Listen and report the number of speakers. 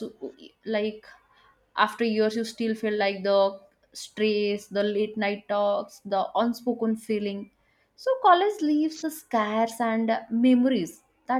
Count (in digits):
1